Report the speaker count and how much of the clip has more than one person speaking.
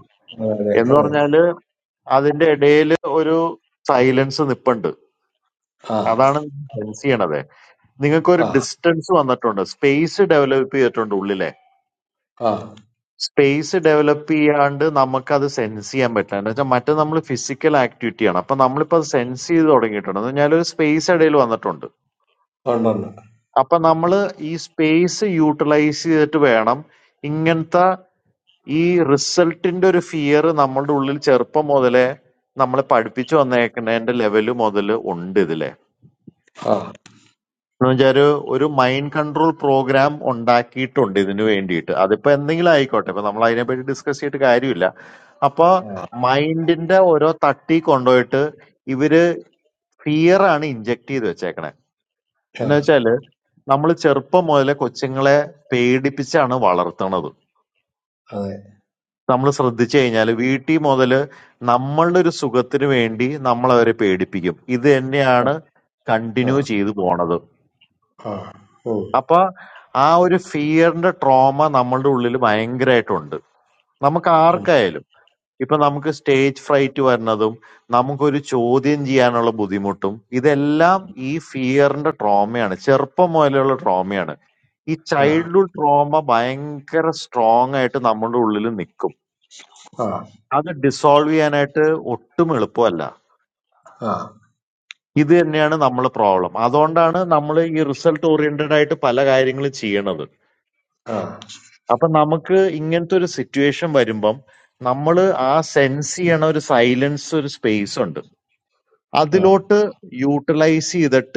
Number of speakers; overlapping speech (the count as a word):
two, about 1%